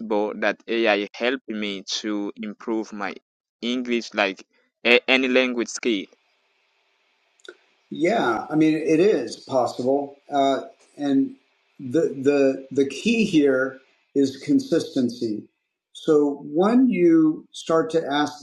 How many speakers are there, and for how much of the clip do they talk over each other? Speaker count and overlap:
2, no overlap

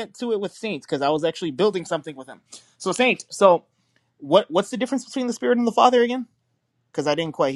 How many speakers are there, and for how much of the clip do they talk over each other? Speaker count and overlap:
1, no overlap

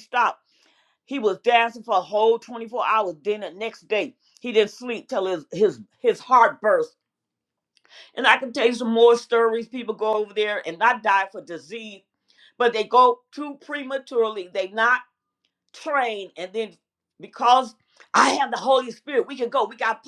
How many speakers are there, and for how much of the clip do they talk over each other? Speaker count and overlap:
1, no overlap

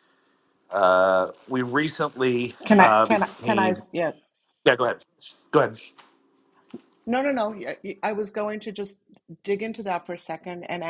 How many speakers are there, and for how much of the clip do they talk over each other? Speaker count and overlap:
2, about 11%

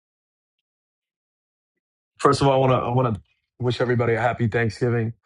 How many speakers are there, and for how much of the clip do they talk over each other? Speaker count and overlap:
1, no overlap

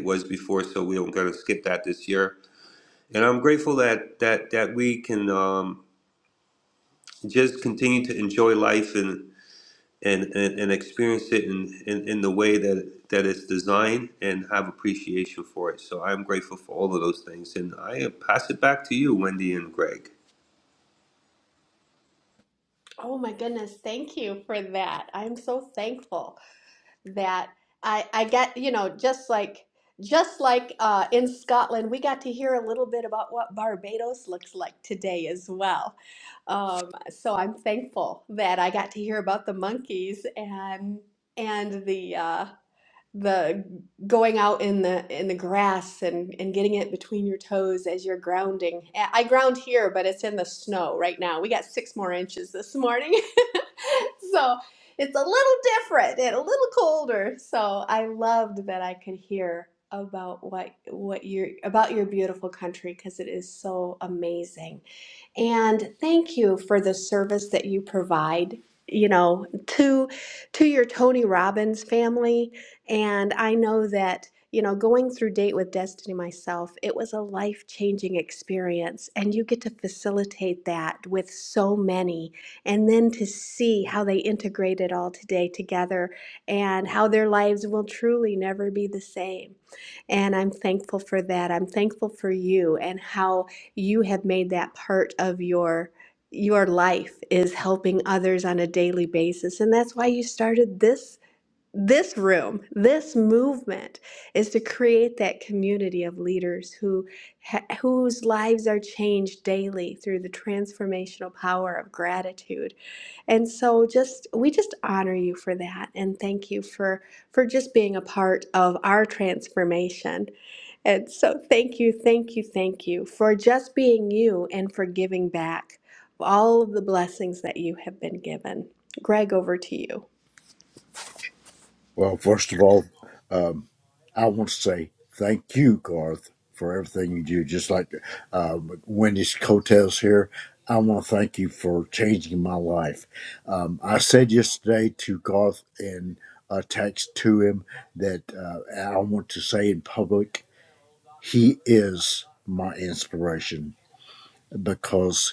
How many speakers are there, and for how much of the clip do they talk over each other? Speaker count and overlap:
3, no overlap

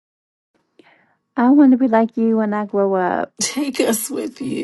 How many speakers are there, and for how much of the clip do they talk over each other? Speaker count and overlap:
2, no overlap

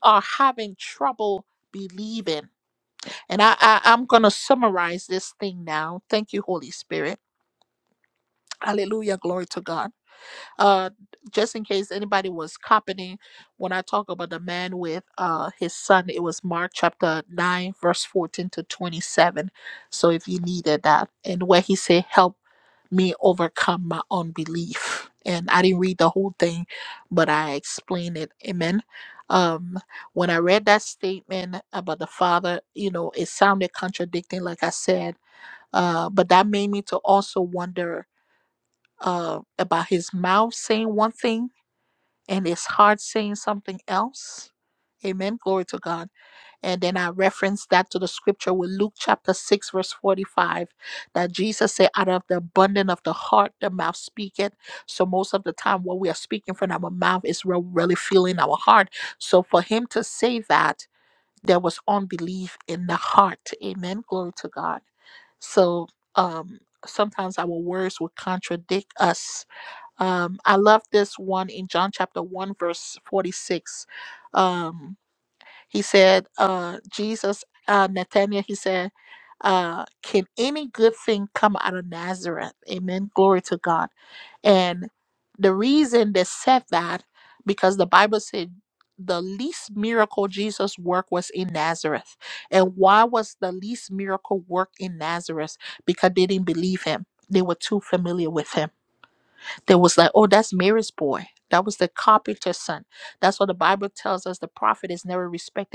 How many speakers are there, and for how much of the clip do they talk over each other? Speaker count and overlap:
1, no overlap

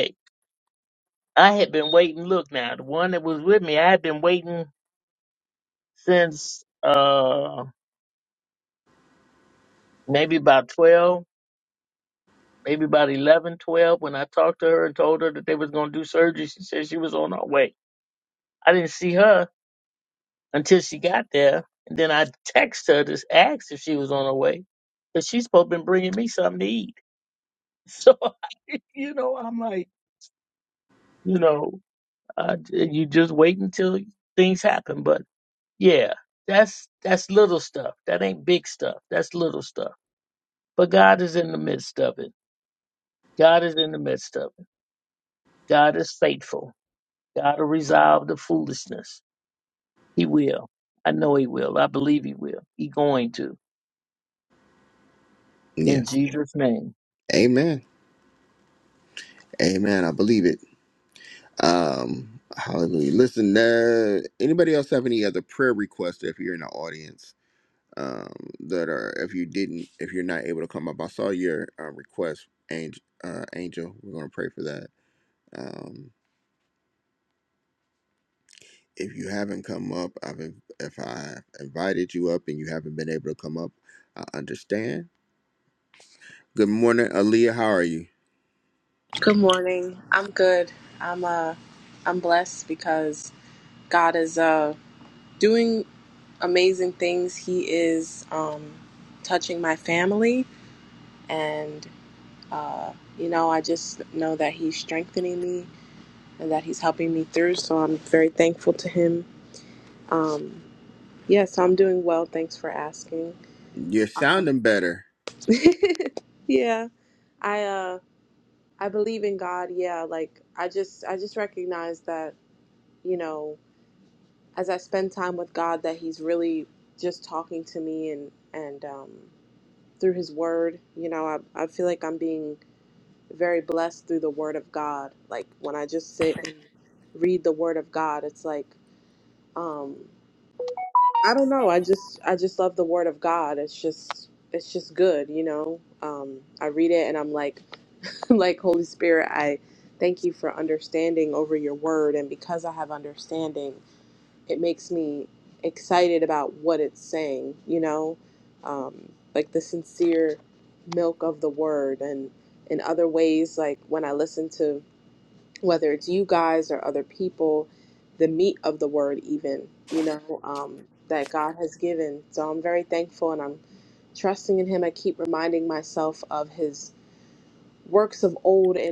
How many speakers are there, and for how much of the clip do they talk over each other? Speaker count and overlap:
3, under 1%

